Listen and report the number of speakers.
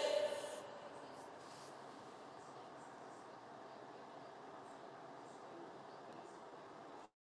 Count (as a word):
zero